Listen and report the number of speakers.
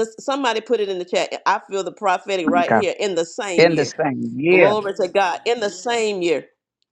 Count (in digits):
2